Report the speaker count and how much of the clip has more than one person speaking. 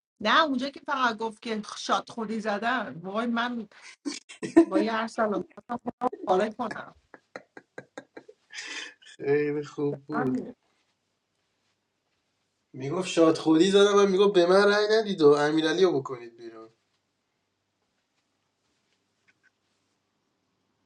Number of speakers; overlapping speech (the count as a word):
two, about 1%